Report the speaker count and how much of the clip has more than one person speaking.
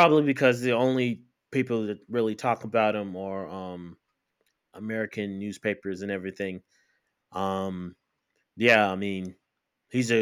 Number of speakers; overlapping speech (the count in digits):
1, no overlap